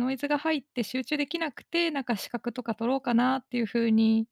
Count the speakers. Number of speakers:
1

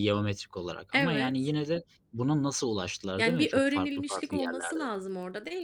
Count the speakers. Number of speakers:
2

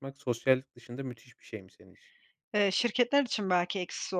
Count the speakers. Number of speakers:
2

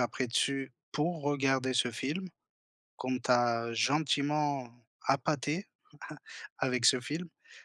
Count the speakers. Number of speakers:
1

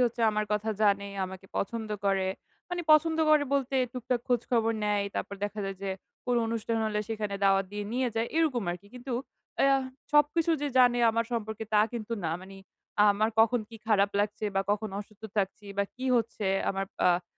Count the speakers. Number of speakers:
1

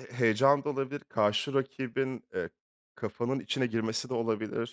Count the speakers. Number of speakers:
1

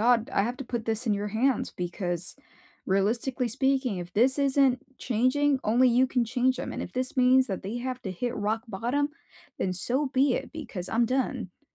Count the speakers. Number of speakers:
1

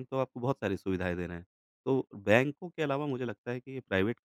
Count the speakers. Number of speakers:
1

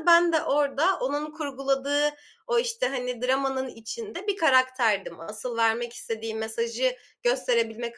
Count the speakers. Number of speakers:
1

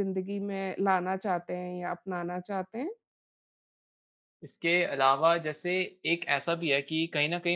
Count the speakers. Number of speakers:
2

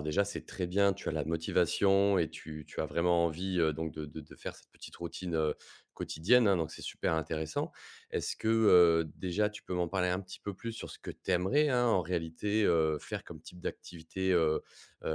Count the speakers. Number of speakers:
1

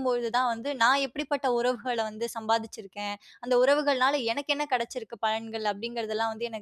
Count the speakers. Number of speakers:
1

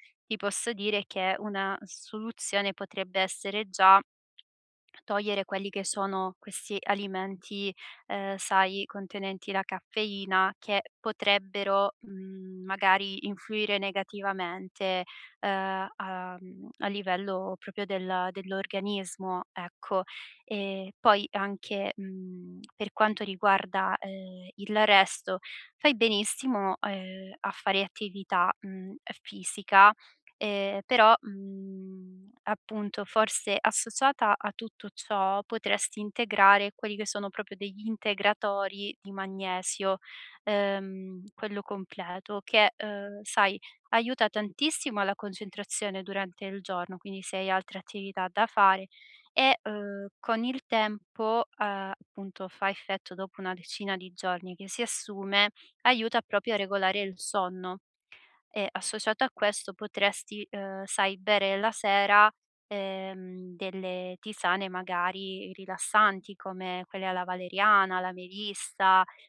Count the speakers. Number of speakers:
1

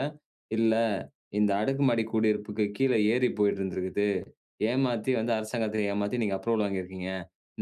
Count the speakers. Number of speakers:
1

